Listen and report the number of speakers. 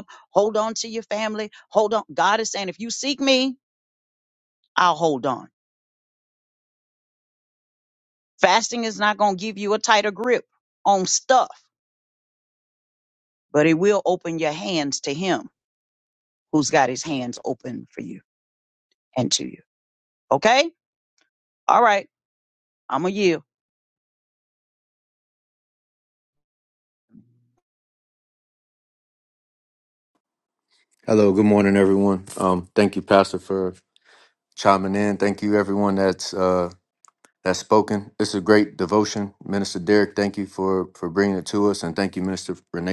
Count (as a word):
two